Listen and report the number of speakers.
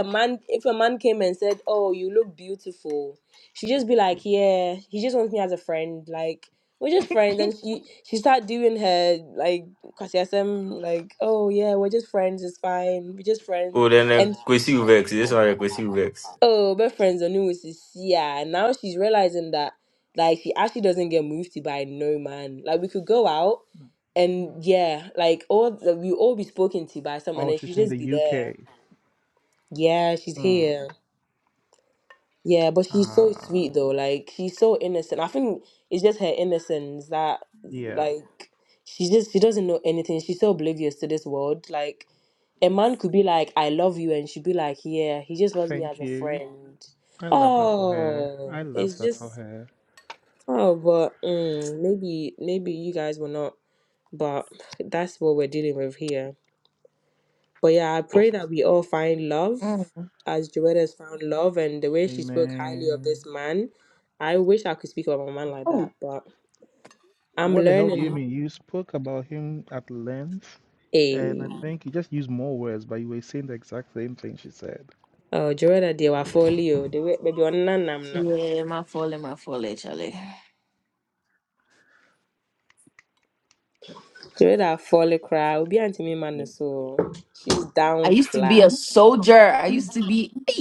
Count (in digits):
4